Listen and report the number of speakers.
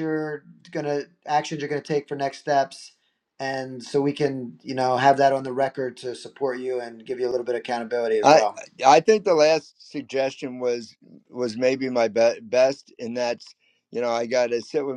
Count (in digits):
2